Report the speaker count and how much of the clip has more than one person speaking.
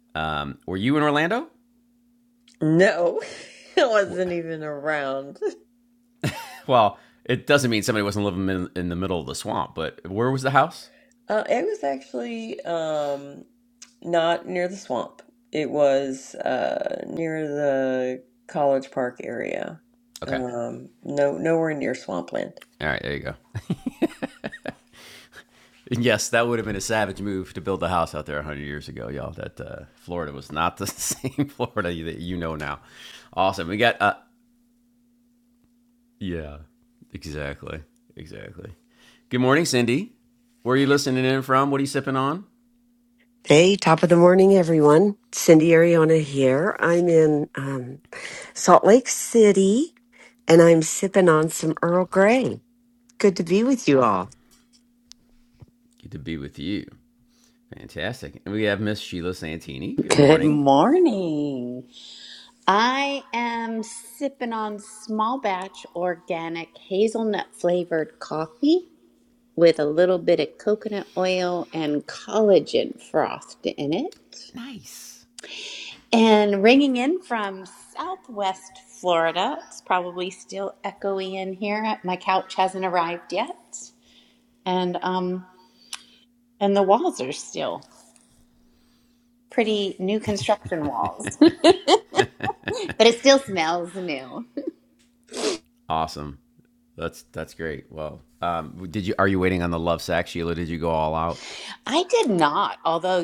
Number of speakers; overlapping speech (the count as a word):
four, about 1%